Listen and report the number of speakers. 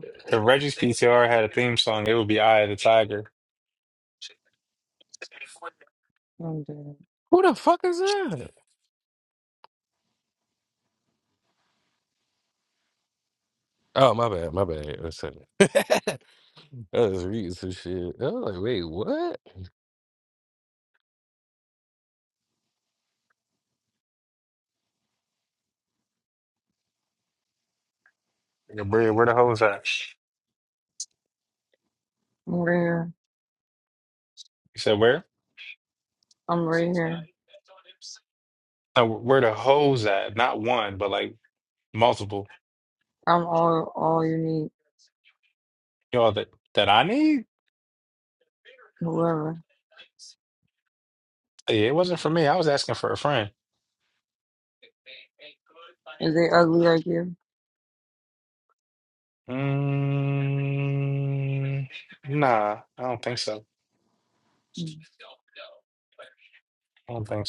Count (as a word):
three